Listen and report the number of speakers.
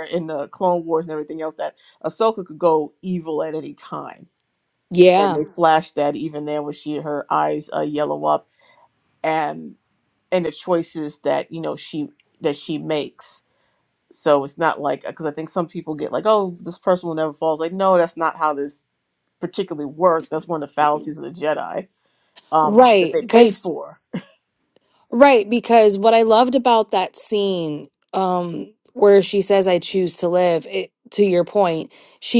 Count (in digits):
2